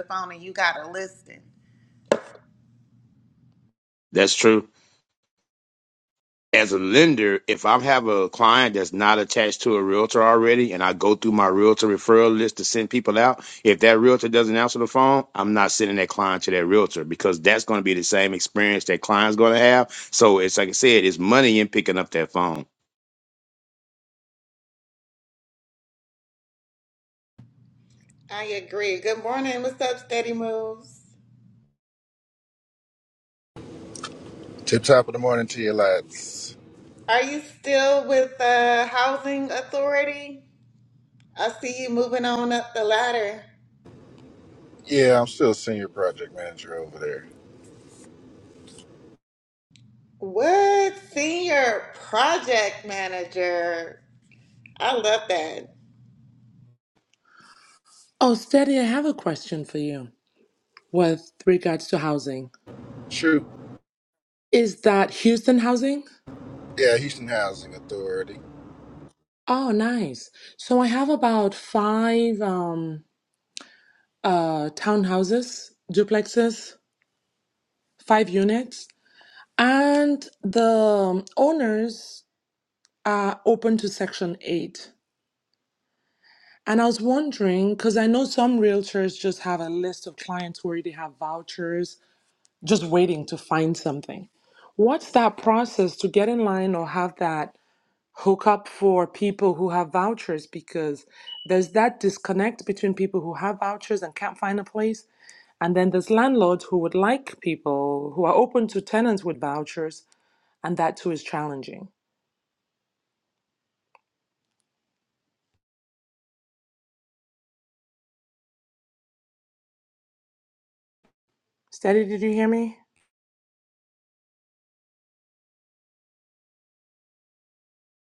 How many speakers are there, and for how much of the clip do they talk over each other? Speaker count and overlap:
4, no overlap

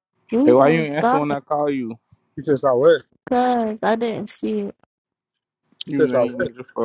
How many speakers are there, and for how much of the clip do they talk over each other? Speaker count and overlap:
3, about 22%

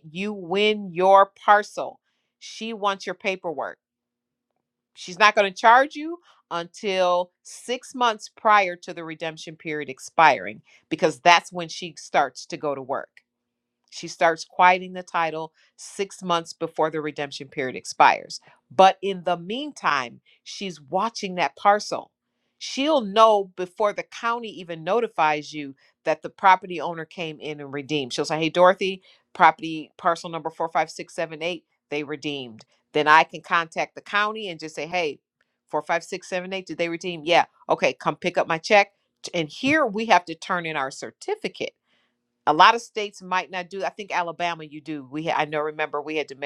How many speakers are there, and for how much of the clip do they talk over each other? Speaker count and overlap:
1, no overlap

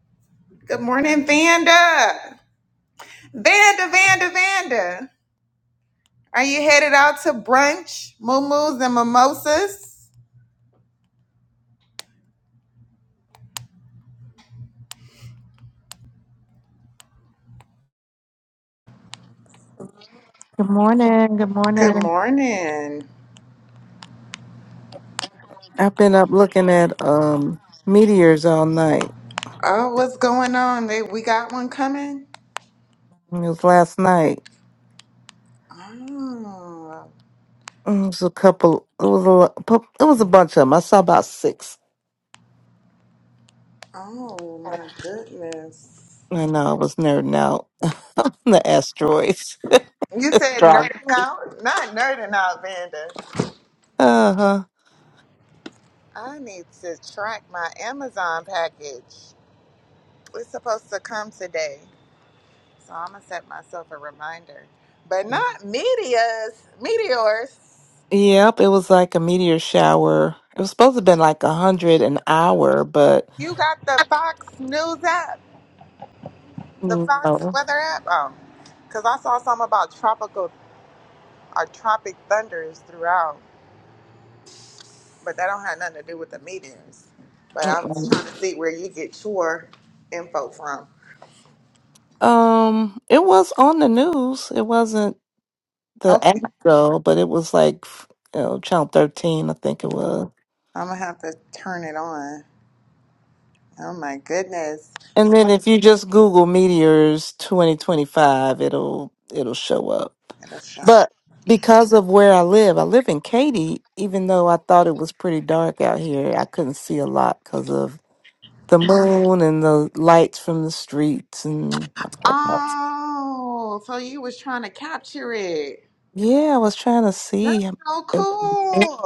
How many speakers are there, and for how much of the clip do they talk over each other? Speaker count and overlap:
2, about 2%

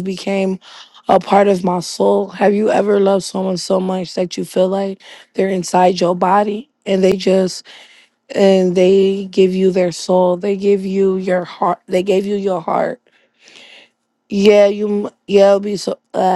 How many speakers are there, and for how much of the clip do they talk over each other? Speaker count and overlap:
1, no overlap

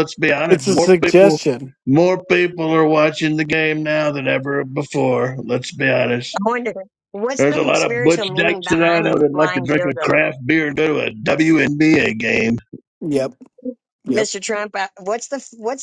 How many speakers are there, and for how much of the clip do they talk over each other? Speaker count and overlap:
3, about 25%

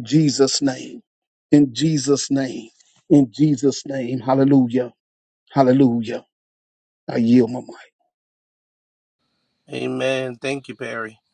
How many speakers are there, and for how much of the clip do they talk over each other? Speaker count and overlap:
2, no overlap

